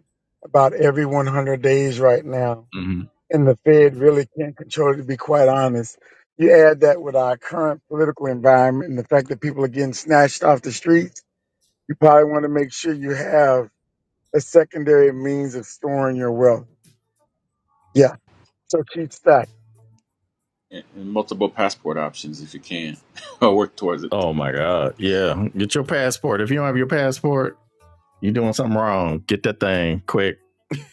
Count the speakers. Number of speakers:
3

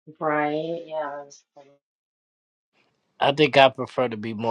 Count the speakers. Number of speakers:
2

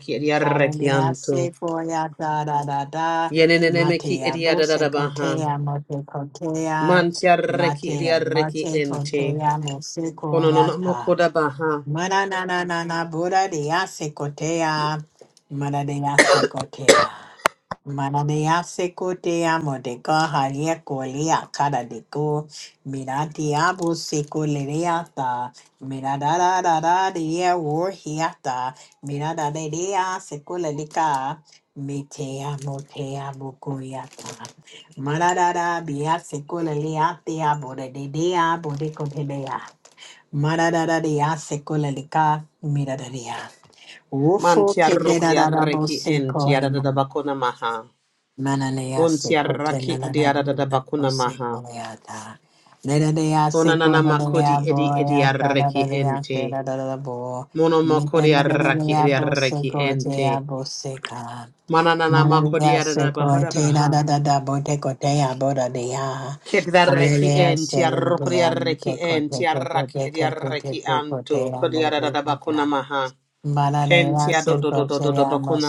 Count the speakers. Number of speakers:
2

